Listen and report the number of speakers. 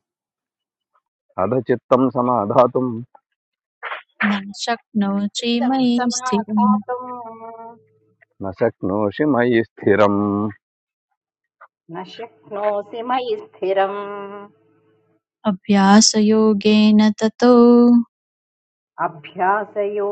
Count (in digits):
3